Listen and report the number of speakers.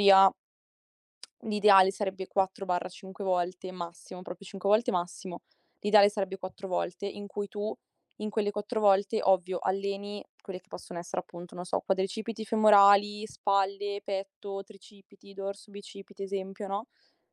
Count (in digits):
1